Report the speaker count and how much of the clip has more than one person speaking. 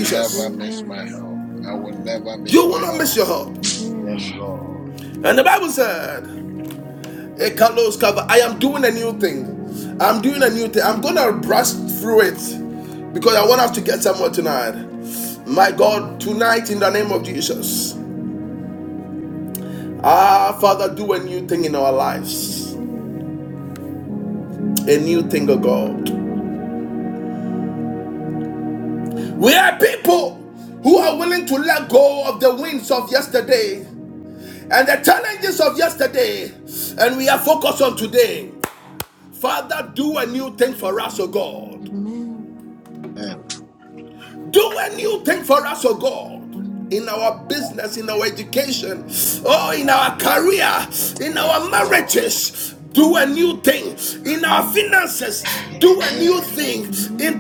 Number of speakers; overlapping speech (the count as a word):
three, about 8%